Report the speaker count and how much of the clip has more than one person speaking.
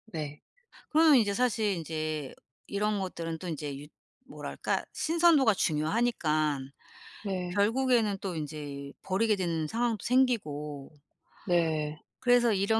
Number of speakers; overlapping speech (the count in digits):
2, about 1%